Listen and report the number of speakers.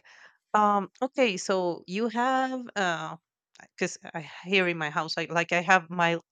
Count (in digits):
1